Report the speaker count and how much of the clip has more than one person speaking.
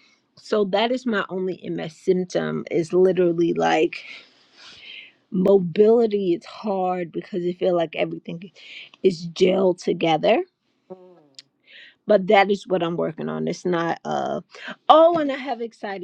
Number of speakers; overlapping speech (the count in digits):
1, no overlap